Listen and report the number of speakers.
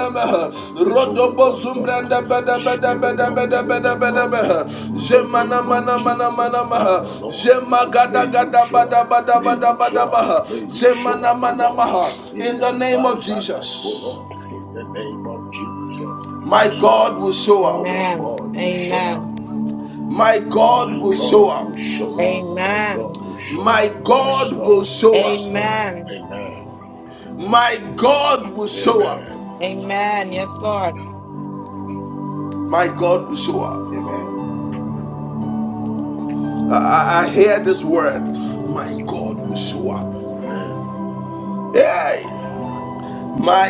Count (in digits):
3